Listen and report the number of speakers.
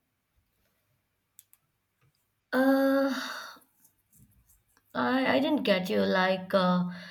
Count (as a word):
one